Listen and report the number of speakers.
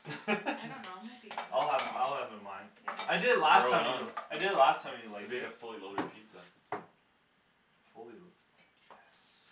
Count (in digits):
3